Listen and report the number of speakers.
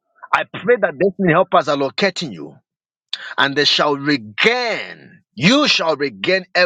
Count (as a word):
one